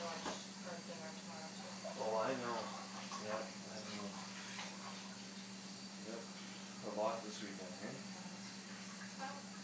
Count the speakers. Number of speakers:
2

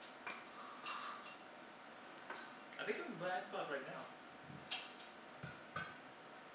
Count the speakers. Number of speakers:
1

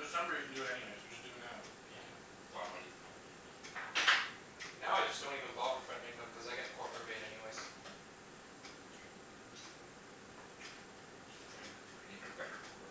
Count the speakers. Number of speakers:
3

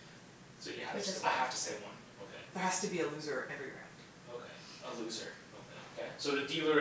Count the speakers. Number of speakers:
3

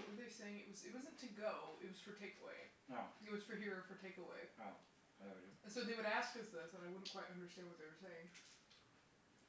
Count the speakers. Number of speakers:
2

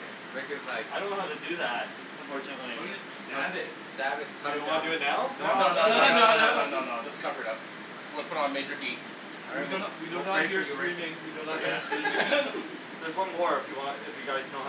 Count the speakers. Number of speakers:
4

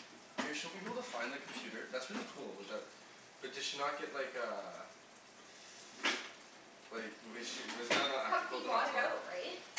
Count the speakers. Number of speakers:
2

